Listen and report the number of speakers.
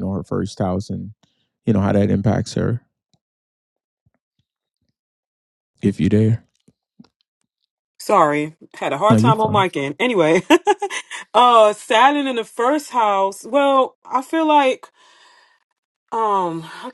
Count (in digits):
2